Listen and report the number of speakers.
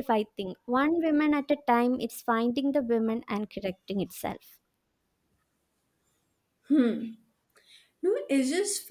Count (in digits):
2